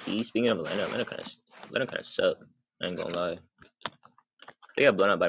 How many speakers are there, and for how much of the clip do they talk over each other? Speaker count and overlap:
one, no overlap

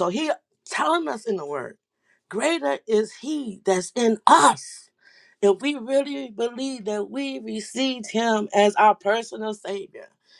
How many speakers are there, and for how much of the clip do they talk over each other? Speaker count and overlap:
one, no overlap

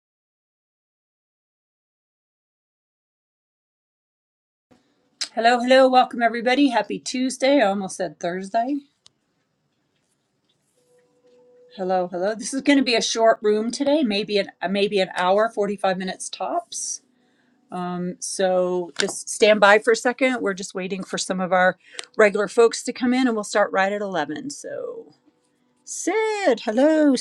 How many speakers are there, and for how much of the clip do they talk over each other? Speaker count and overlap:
one, no overlap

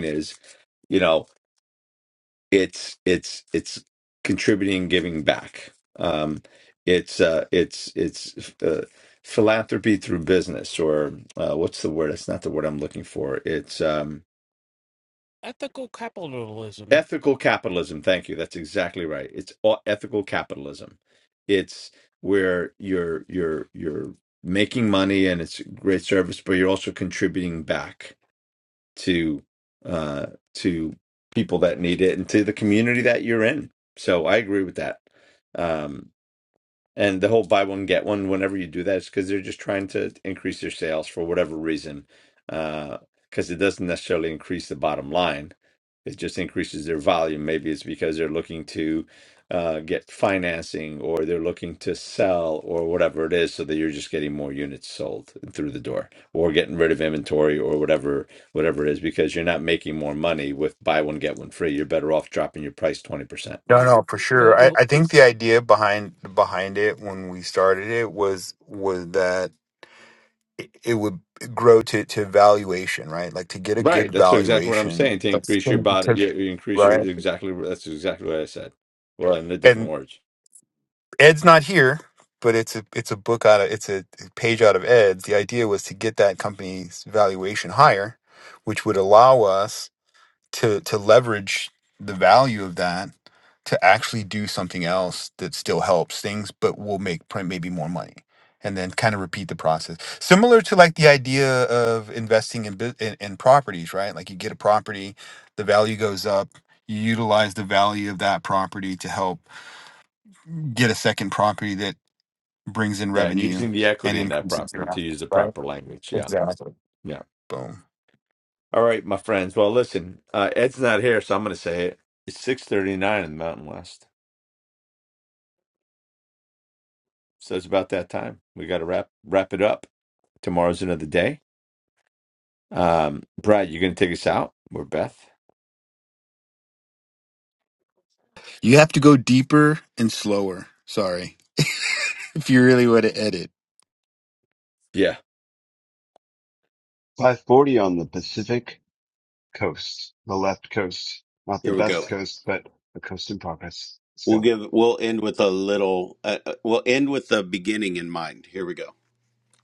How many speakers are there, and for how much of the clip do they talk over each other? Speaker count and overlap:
five, about 4%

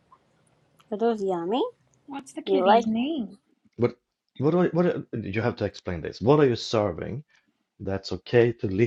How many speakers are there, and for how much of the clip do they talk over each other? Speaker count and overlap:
three, about 4%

